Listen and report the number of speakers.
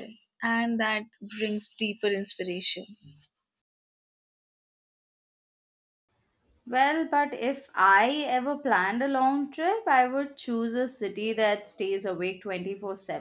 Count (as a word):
two